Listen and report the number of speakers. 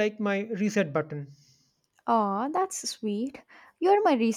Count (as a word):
two